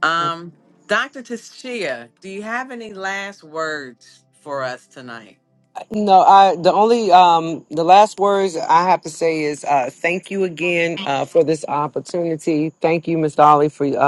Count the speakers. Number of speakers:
two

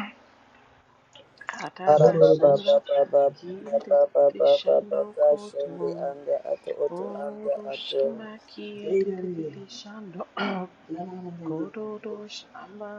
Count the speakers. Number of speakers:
three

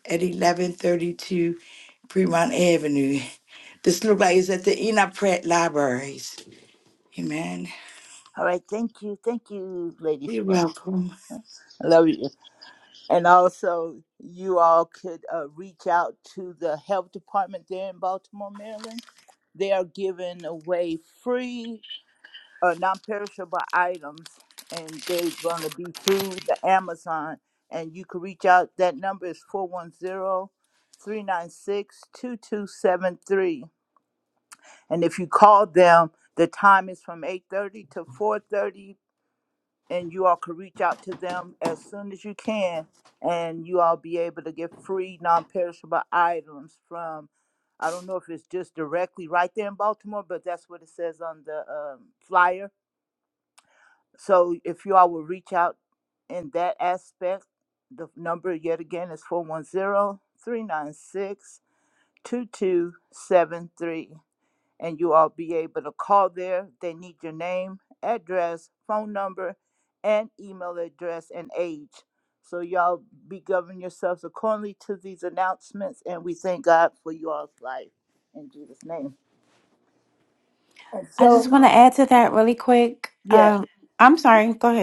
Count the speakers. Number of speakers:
three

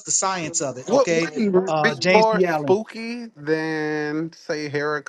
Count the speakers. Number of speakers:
two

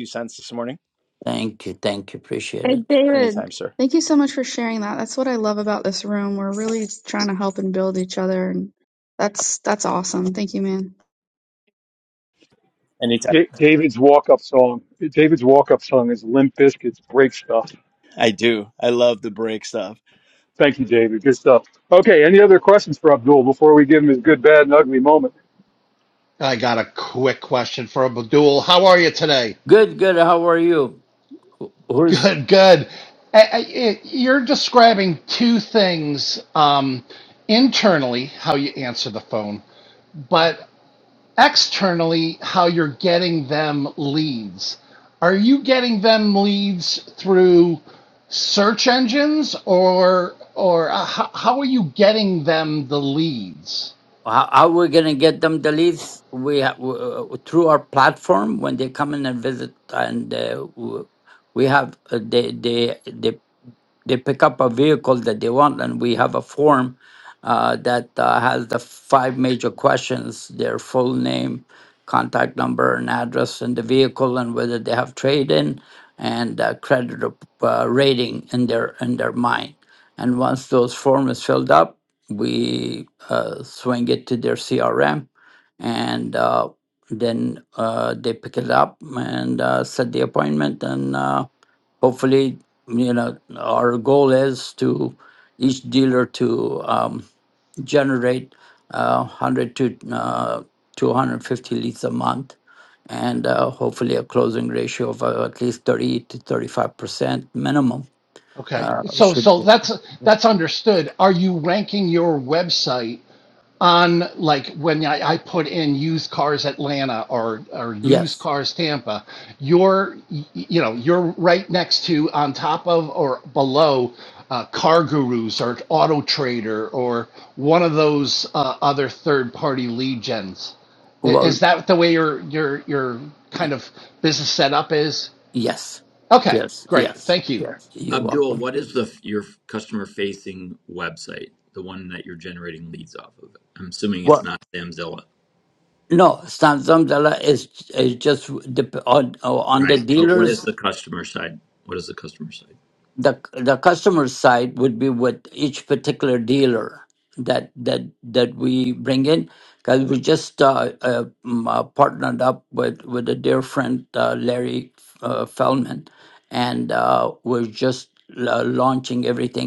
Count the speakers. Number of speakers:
six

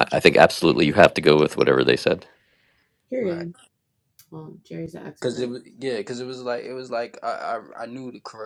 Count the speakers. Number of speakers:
three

